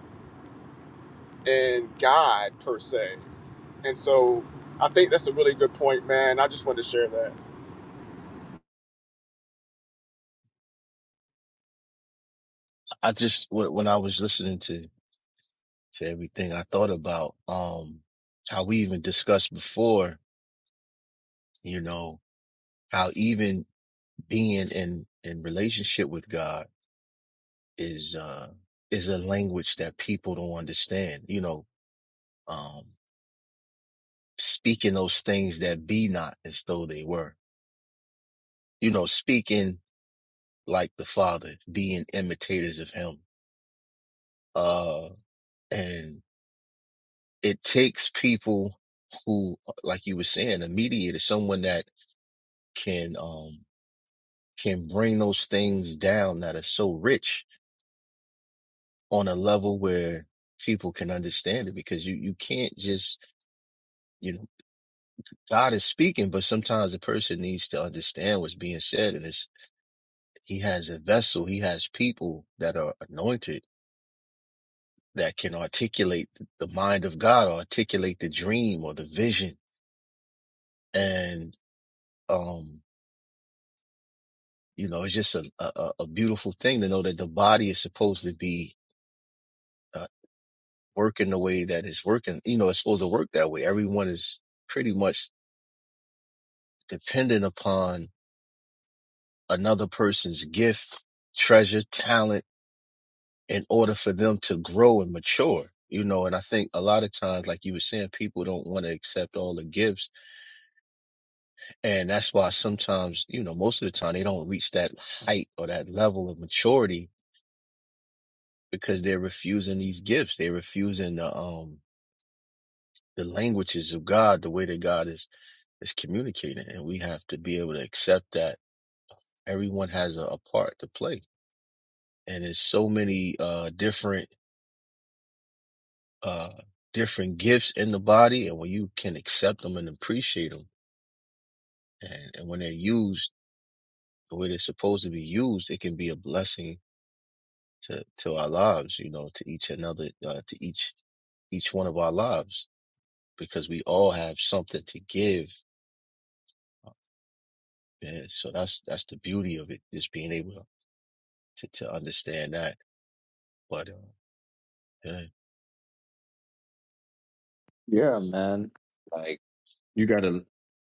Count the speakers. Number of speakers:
three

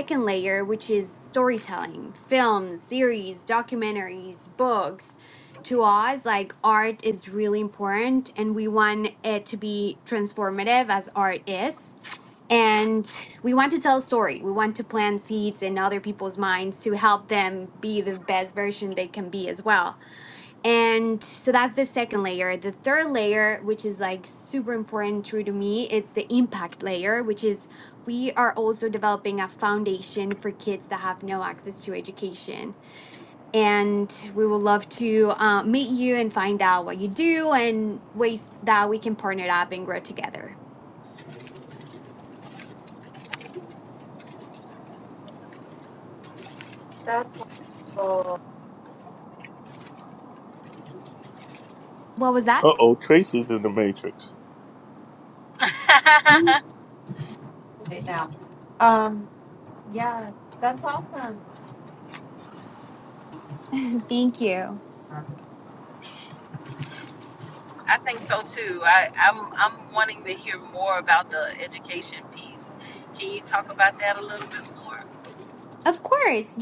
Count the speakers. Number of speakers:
four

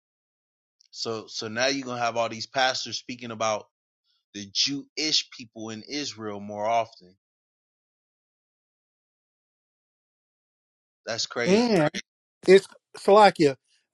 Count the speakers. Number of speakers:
two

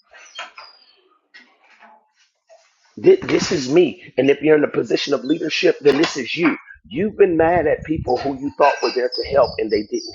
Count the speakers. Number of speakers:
one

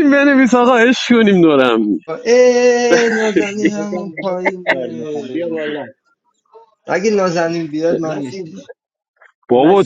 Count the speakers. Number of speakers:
three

